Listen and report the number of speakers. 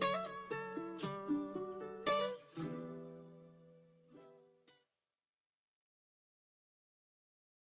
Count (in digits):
0